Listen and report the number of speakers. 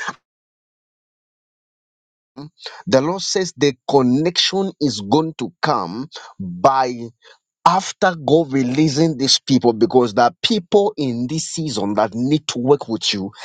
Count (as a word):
one